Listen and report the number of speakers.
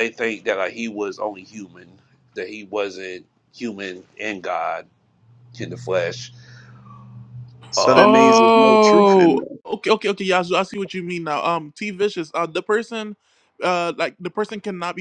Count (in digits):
3